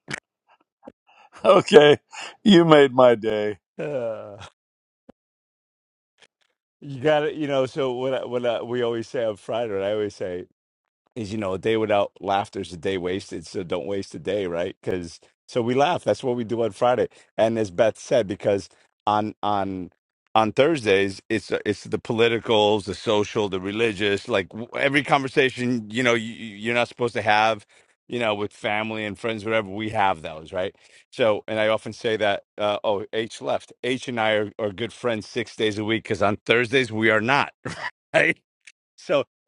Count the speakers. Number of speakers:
2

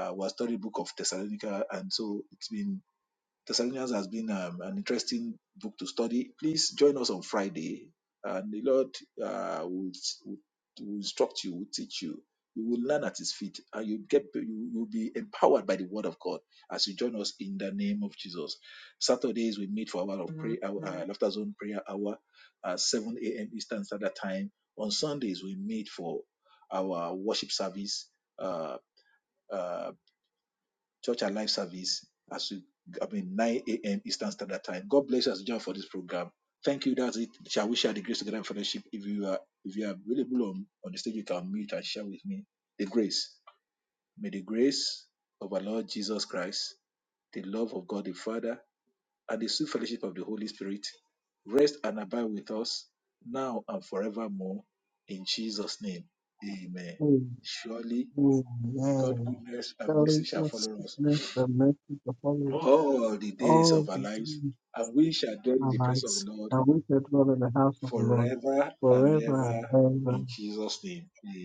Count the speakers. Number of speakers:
2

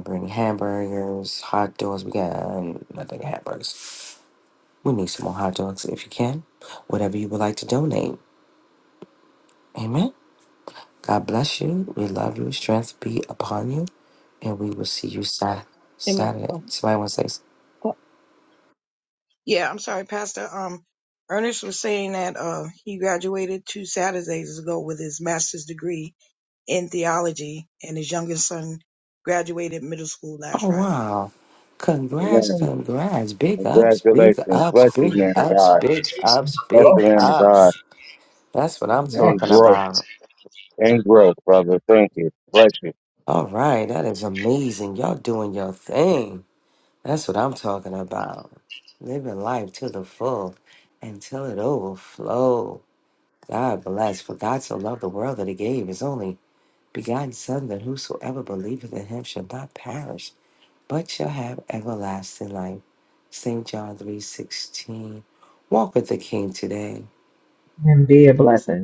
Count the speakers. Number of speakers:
4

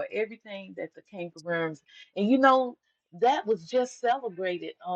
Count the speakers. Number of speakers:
1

